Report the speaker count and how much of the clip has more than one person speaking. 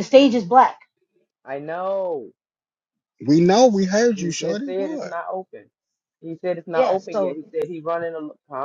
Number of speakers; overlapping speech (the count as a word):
three, about 18%